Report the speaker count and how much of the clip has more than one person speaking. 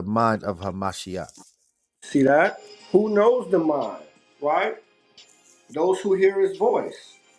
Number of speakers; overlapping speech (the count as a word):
two, no overlap